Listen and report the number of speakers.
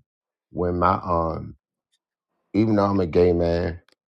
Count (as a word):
one